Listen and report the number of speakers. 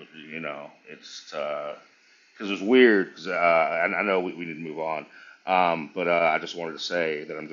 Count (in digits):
1